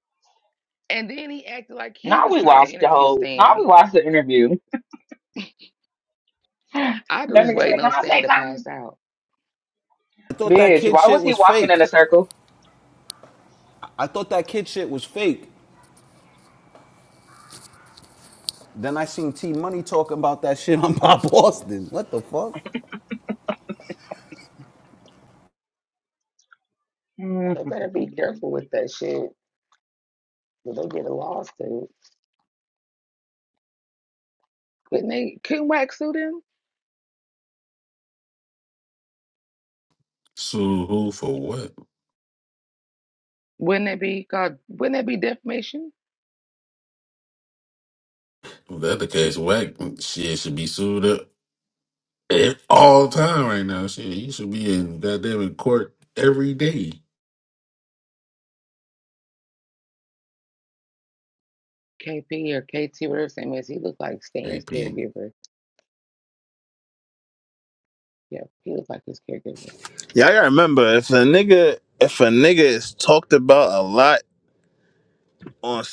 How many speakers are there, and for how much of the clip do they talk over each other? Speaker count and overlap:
five, about 6%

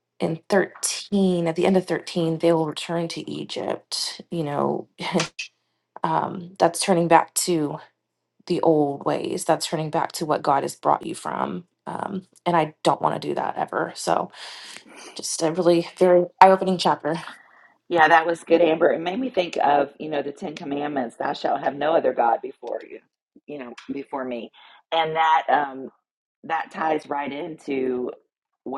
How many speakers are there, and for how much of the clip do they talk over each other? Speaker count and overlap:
two, no overlap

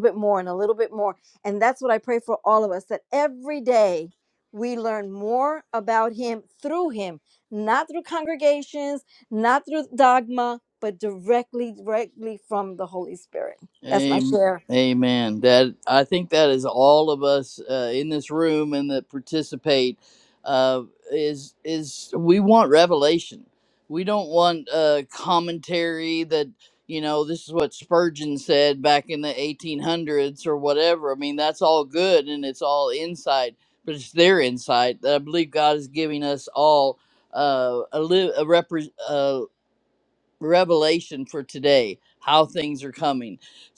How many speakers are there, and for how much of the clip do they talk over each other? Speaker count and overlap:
two, about 1%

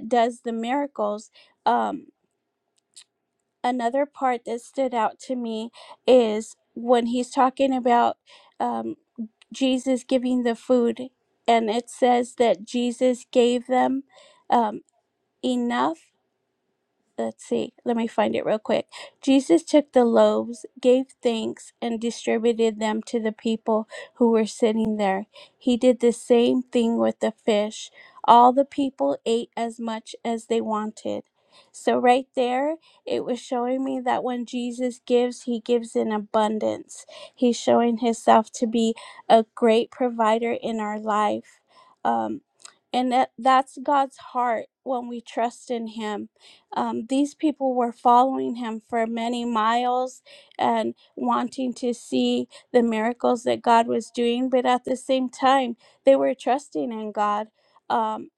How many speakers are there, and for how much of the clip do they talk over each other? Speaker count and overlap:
one, no overlap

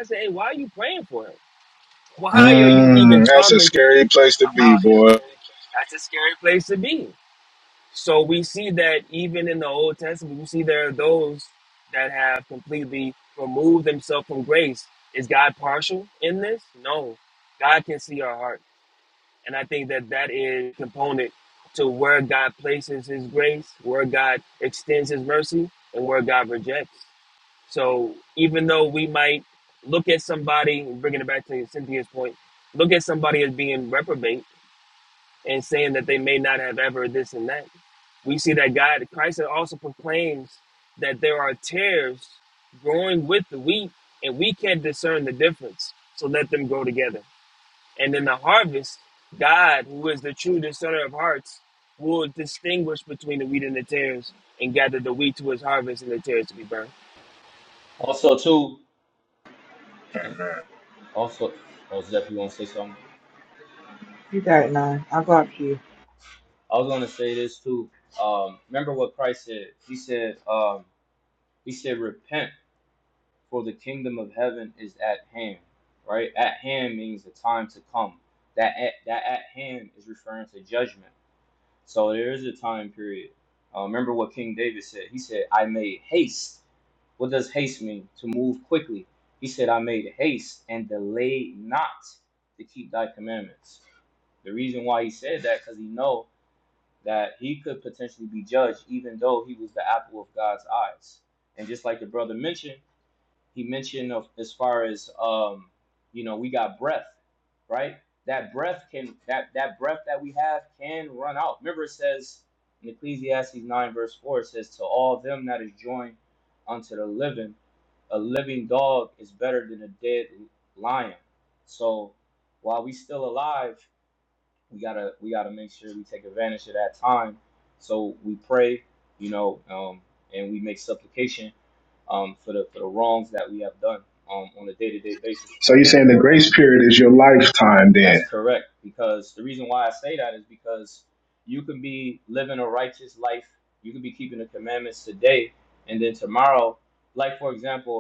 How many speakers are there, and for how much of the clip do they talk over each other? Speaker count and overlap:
four, about 2%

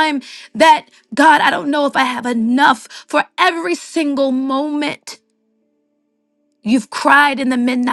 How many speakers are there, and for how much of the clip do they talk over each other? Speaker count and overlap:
one, no overlap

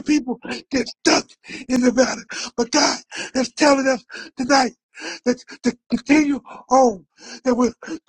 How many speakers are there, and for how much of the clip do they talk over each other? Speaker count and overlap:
one, no overlap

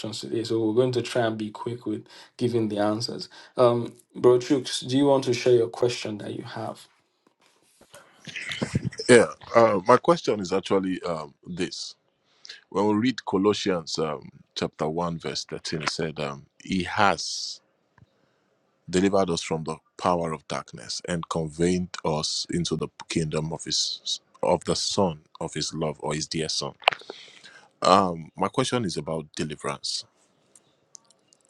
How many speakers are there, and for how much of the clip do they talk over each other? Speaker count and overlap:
two, no overlap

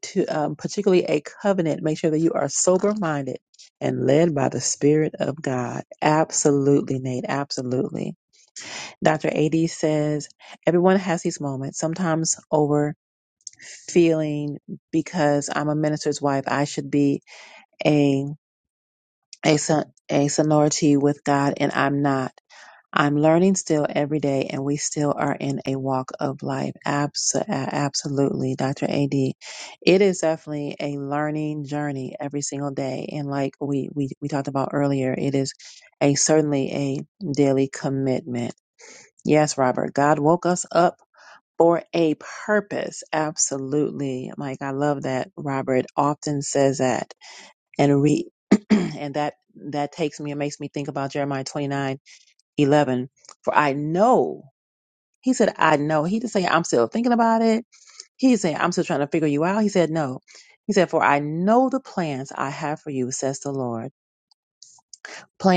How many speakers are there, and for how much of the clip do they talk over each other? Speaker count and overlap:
one, no overlap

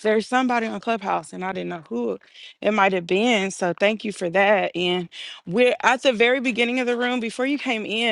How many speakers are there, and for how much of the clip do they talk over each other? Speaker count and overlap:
one, no overlap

